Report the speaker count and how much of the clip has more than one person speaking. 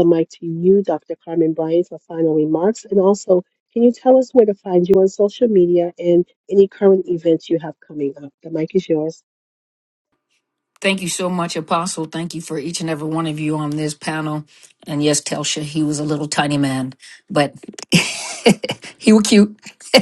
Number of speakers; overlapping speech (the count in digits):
2, no overlap